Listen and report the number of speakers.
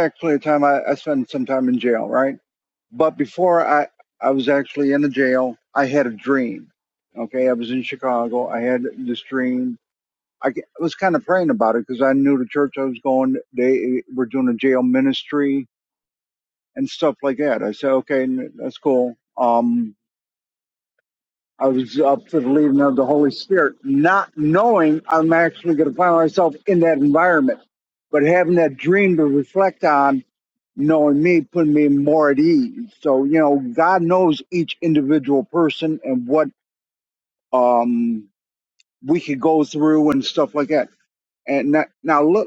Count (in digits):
1